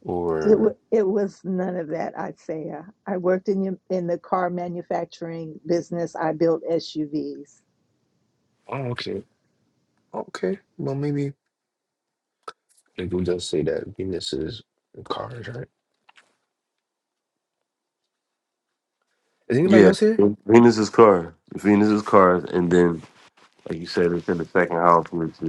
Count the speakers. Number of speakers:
three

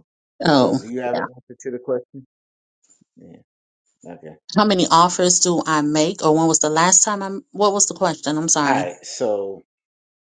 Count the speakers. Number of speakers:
two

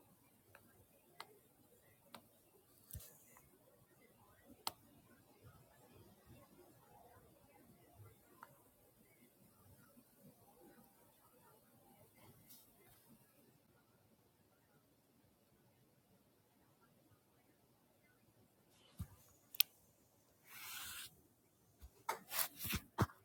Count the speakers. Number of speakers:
zero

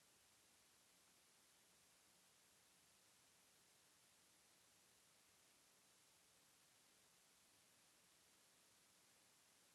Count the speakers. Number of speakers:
zero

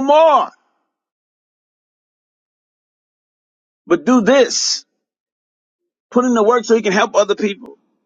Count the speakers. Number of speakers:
one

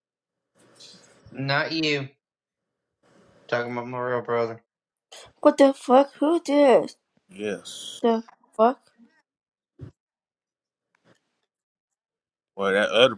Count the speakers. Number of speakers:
three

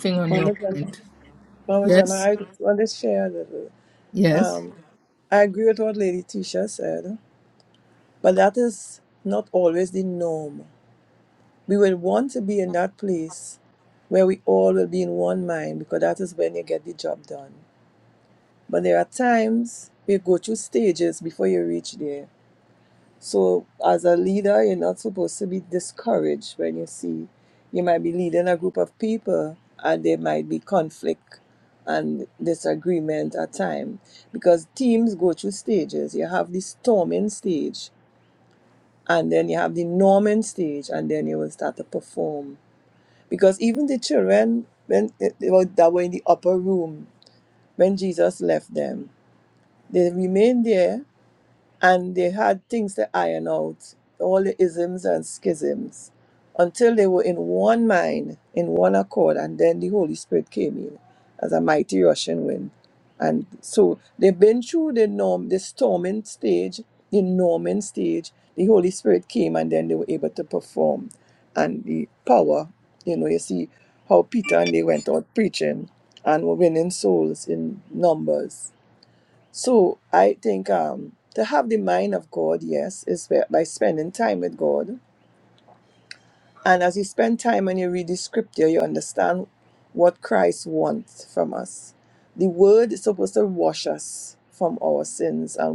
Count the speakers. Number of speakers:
two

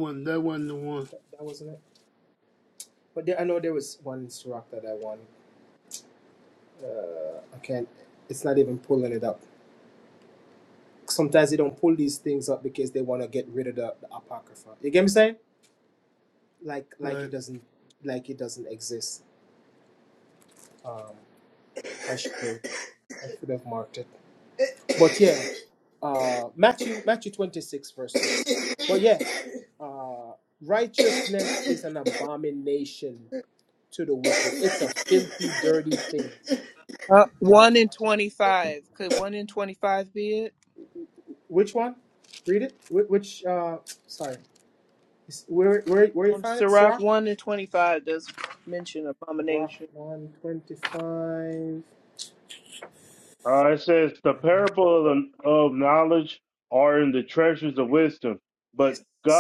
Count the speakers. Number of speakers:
four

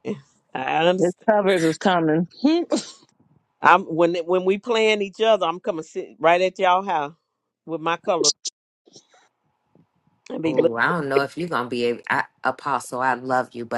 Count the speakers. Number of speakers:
three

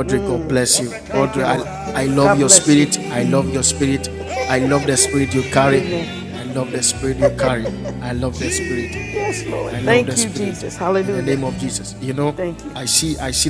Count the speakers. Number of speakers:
two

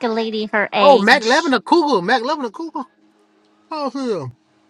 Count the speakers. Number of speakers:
two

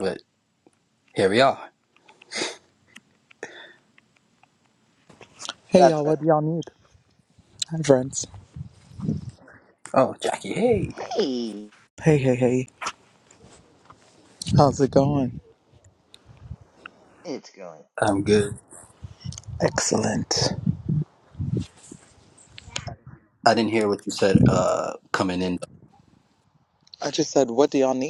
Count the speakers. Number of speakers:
three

